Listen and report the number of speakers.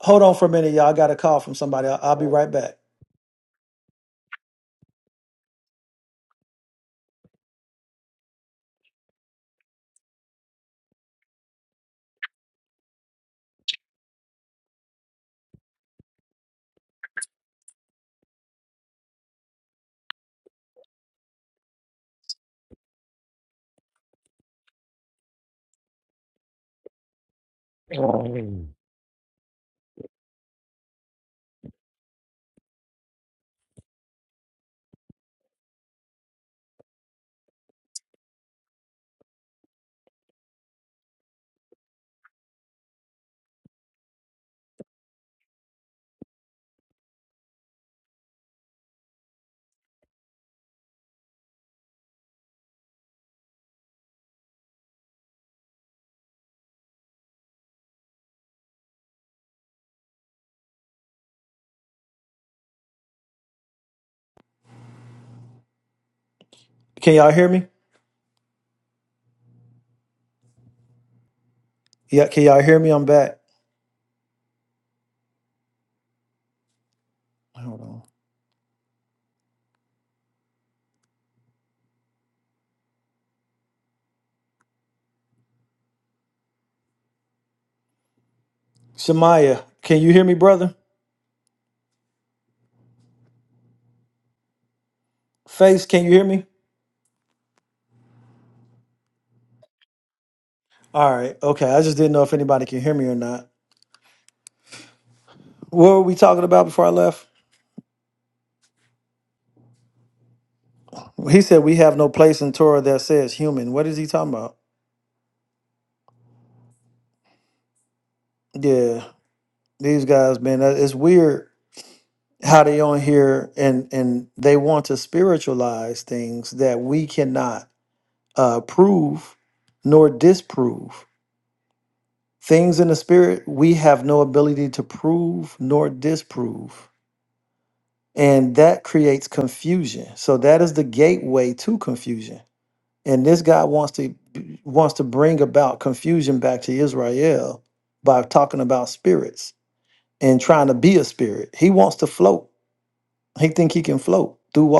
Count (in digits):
2